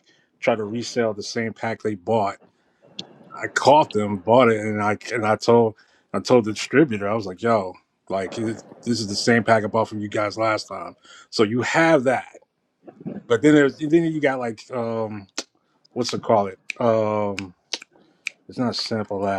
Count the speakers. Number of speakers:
1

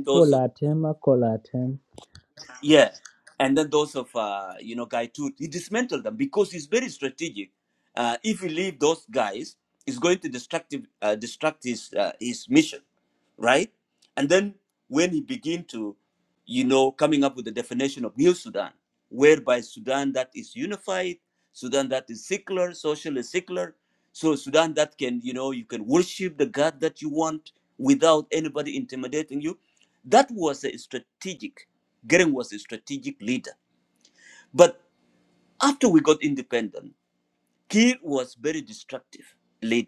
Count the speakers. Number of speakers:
2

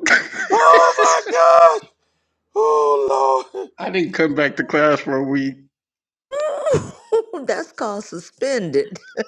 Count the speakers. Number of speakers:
3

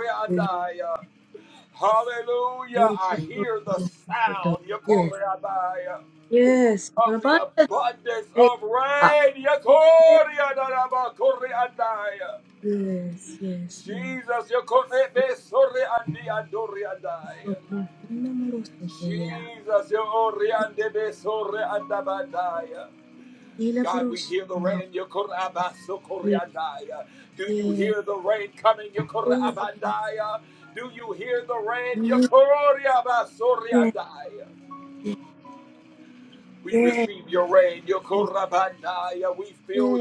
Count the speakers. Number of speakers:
2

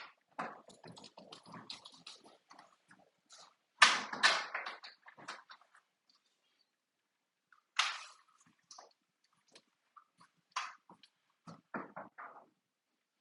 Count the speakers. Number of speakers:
0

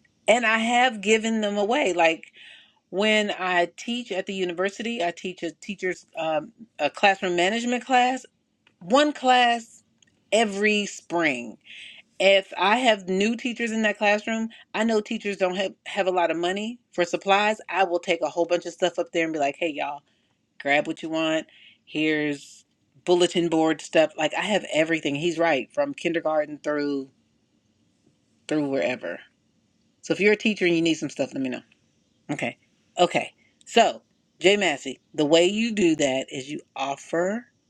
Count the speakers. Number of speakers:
1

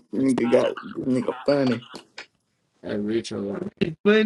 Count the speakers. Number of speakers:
2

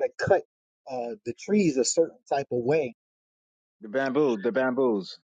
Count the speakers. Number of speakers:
2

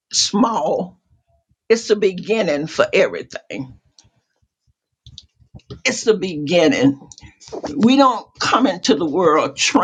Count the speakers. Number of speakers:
1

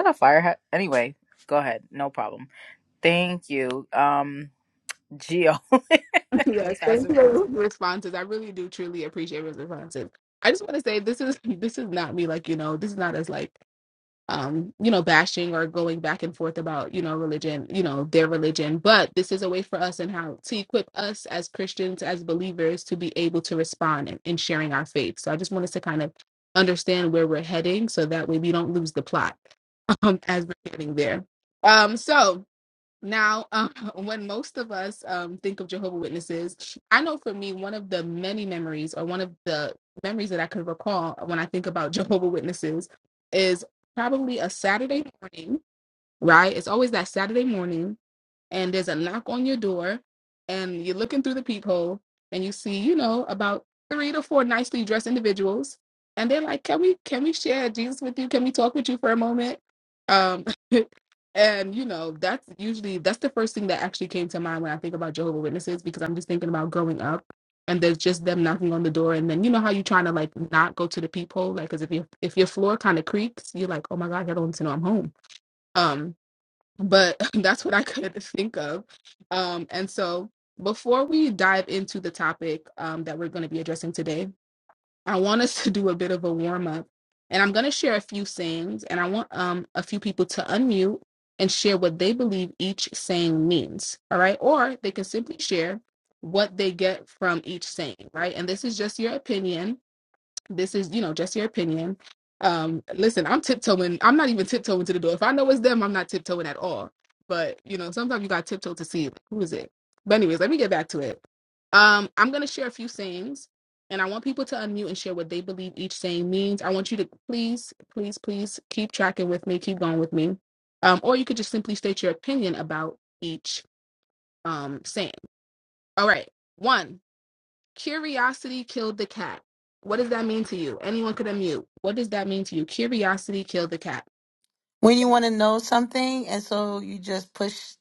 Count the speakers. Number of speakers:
3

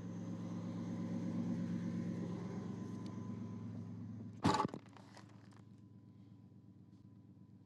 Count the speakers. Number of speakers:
0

